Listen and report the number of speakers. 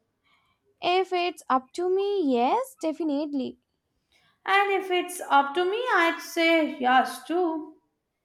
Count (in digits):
2